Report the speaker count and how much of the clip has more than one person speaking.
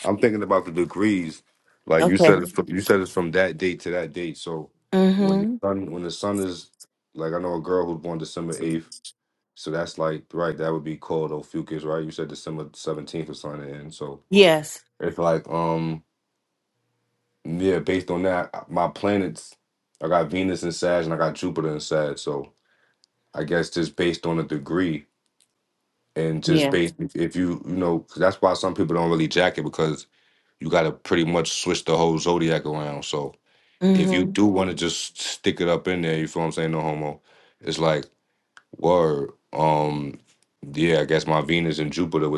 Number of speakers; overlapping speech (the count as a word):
two, about 3%